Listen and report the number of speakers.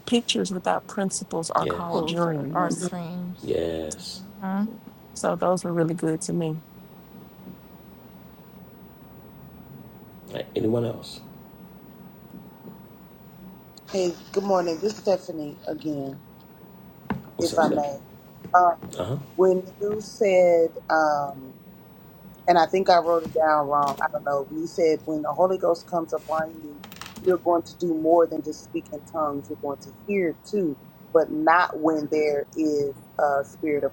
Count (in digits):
4